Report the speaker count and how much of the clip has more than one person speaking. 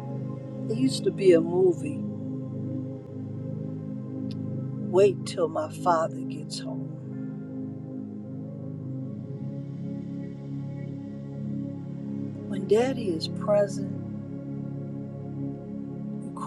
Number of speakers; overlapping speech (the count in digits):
1, no overlap